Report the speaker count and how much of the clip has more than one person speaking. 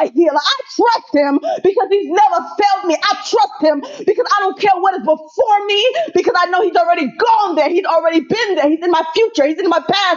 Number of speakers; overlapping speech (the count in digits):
1, no overlap